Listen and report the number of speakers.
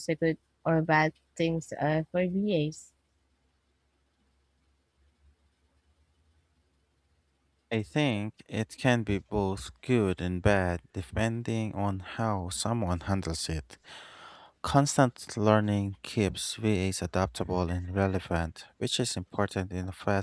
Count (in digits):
2